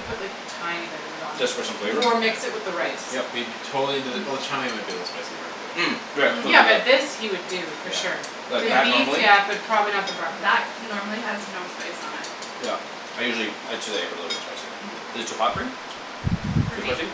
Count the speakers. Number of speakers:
4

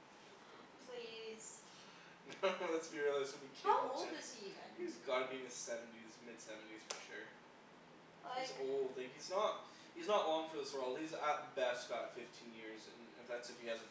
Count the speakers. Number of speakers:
2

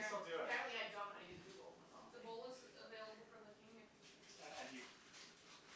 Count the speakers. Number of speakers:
3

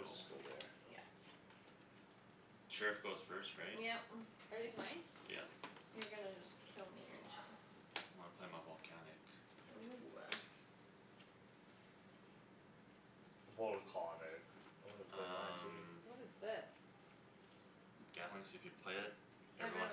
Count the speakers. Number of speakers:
4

